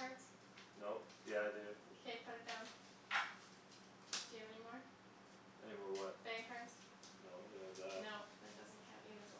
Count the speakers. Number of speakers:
2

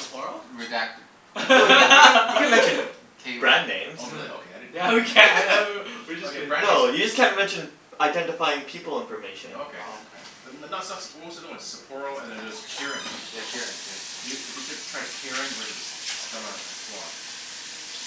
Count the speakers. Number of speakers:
4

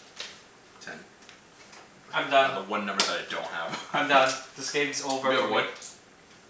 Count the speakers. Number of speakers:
2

